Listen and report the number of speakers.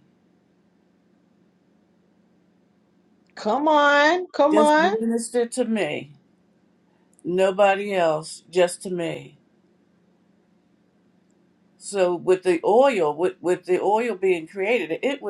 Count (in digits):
2